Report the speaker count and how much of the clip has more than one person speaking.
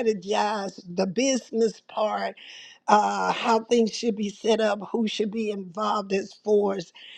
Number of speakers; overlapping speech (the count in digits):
1, no overlap